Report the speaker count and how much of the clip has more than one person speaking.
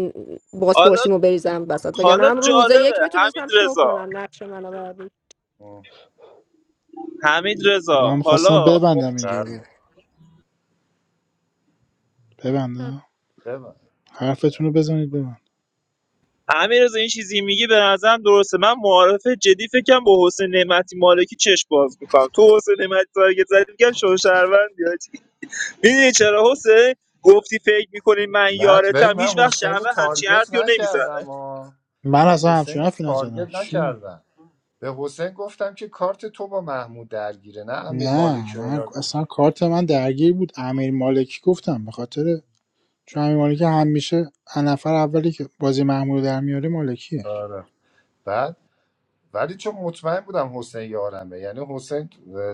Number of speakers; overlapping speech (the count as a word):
four, about 18%